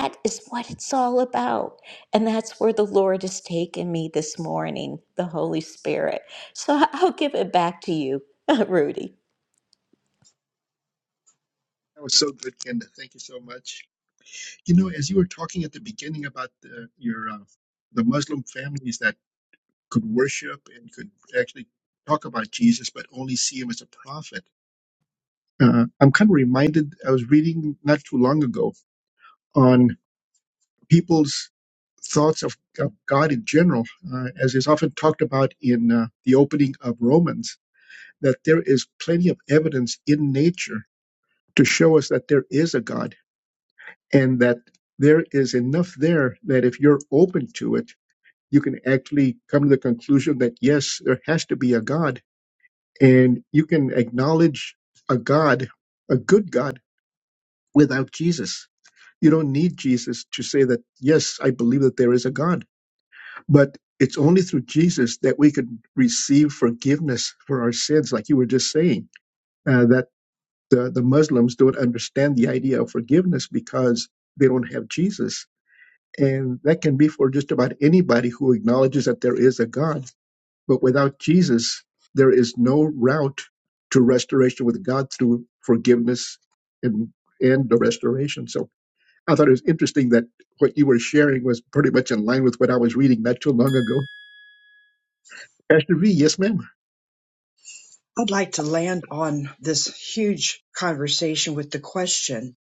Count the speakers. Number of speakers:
three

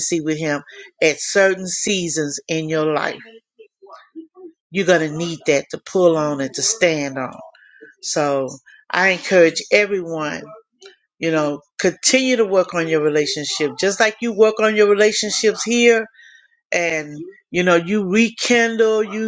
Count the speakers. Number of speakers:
one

